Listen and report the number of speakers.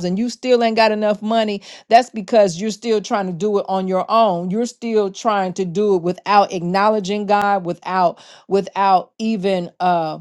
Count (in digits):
1